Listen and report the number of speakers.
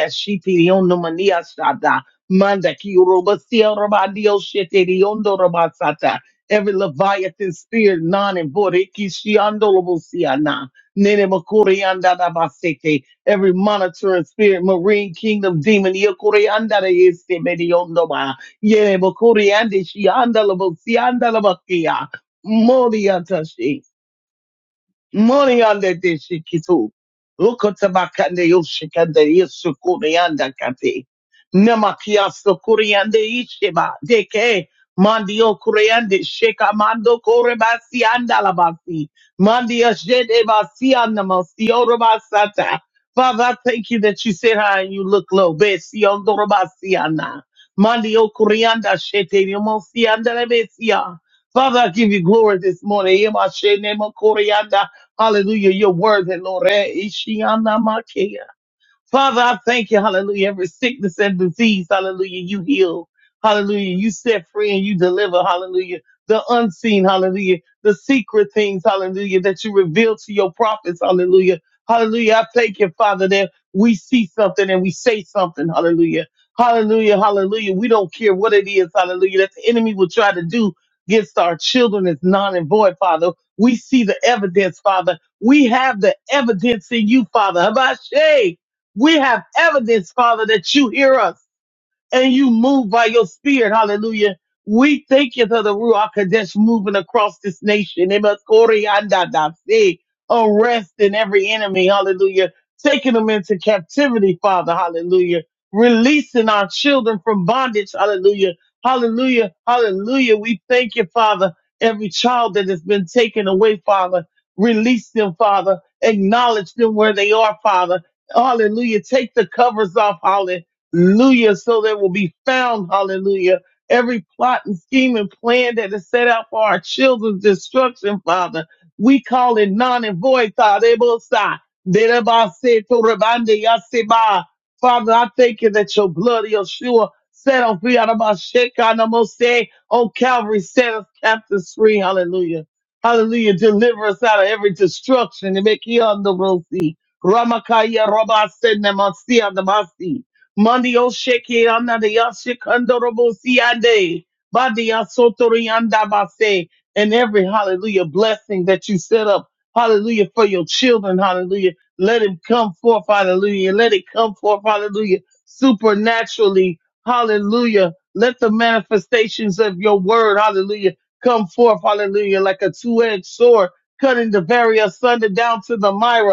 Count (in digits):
1